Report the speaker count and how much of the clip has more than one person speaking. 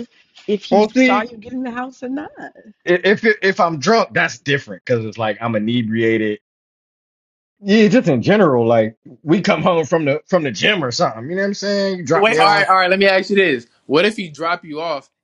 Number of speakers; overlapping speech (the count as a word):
three, about 7%